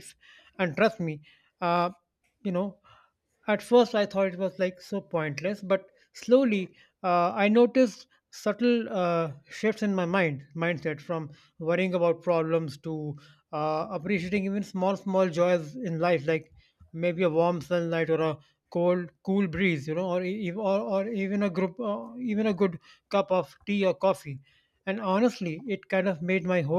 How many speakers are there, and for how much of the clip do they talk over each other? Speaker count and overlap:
one, no overlap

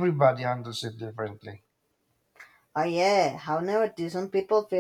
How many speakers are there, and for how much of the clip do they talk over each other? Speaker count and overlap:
two, no overlap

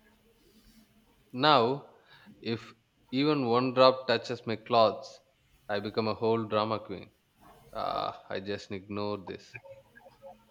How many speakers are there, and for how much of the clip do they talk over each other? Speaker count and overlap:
one, no overlap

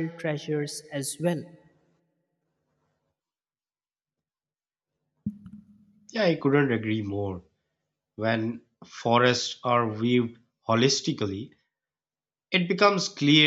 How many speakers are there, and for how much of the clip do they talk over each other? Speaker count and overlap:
two, no overlap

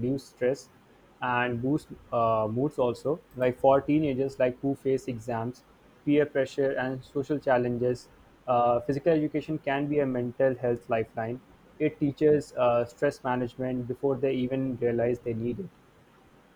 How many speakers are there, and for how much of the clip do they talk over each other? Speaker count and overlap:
one, no overlap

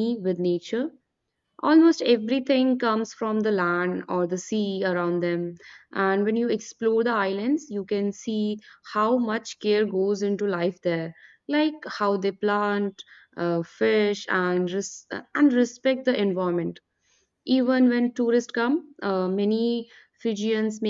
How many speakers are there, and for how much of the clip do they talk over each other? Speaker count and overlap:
one, no overlap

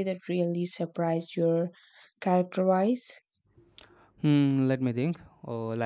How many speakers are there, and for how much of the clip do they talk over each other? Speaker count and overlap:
two, no overlap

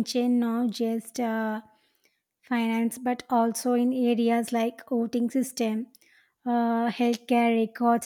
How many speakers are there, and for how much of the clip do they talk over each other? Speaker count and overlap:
one, no overlap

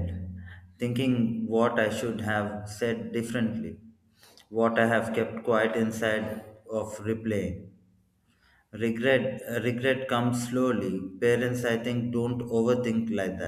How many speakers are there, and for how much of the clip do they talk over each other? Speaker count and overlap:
one, no overlap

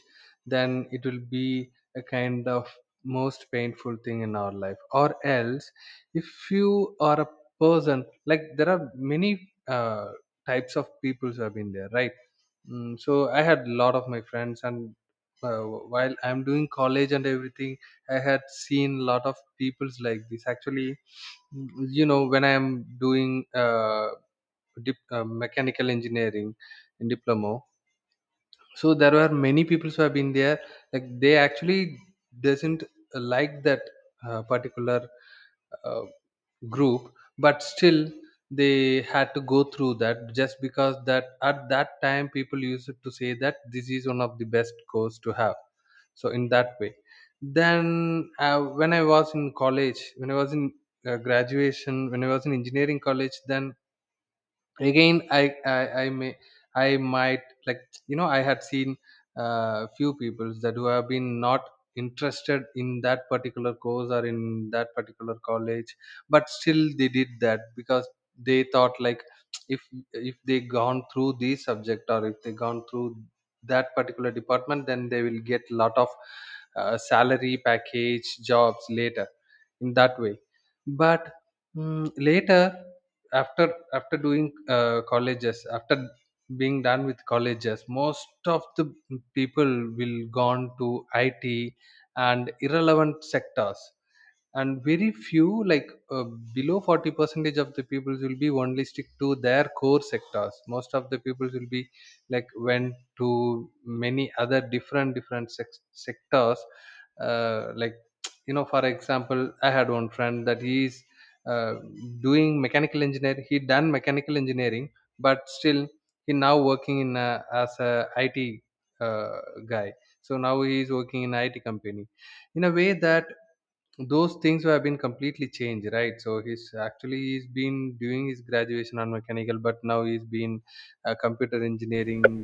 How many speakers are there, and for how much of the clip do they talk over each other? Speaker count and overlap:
one, no overlap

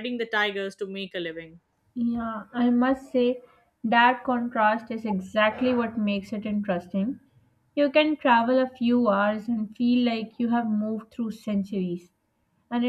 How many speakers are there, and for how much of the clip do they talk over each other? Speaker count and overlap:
two, no overlap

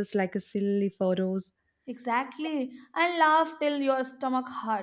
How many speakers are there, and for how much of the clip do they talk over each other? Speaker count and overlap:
two, no overlap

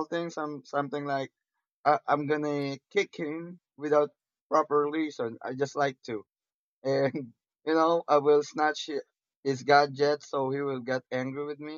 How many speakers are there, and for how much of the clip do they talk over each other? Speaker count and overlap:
one, no overlap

